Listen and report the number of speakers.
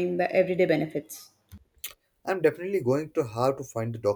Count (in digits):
2